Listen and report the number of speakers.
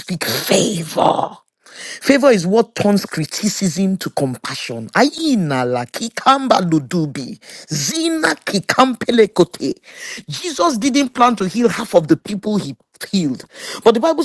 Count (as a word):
one